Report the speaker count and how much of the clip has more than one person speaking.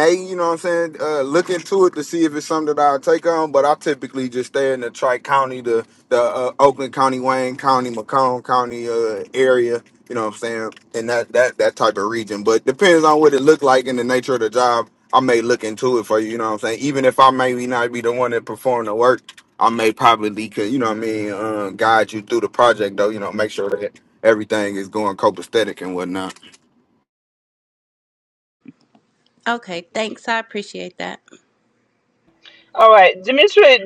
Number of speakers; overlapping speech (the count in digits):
3, no overlap